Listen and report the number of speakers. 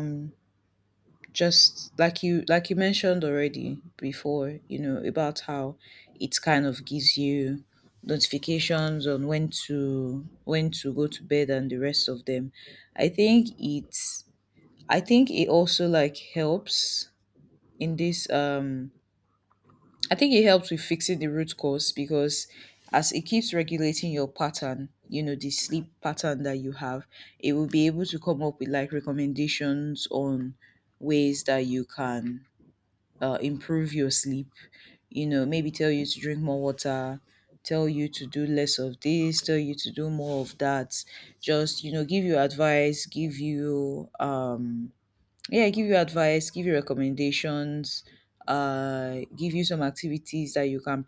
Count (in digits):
1